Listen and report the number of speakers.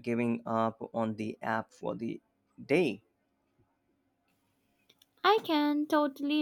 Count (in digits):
2